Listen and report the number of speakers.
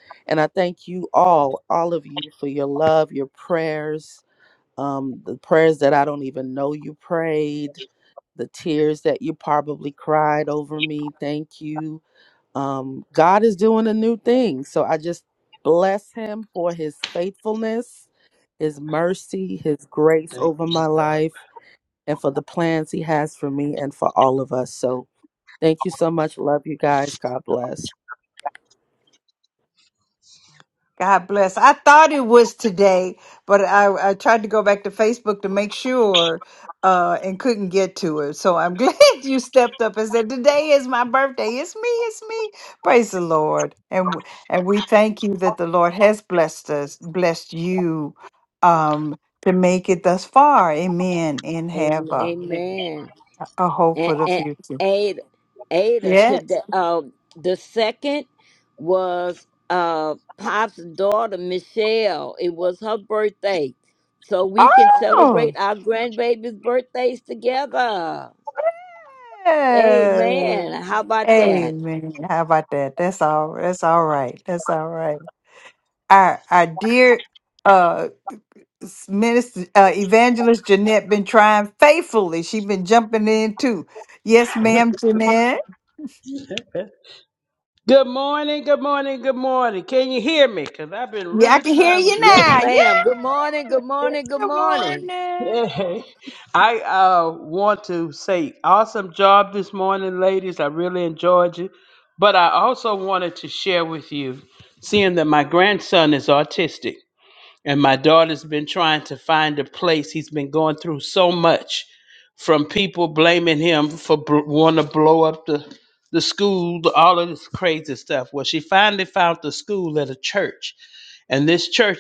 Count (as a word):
four